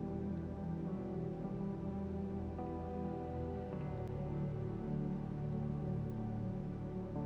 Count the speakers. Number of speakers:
0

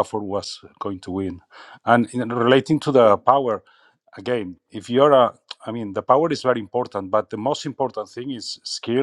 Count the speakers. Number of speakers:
1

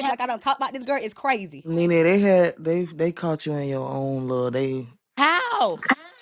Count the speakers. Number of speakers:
2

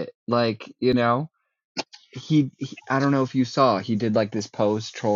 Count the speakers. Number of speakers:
1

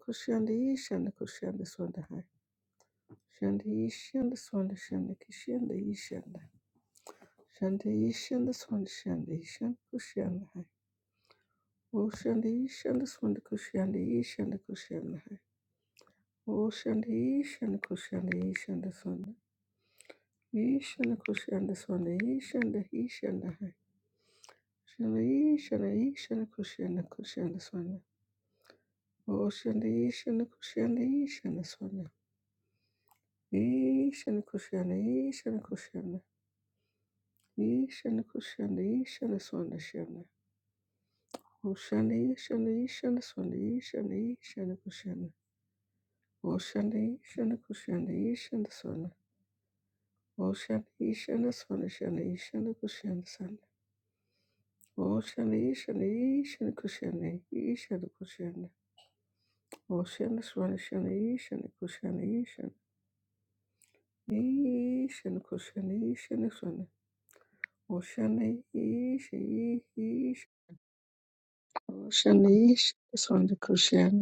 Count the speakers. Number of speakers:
1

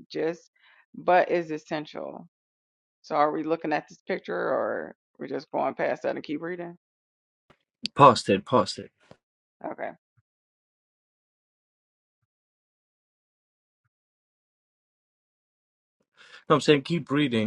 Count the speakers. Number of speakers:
2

